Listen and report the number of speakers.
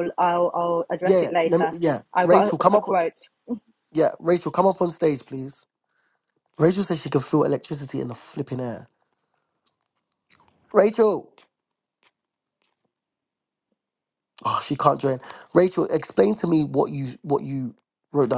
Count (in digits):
2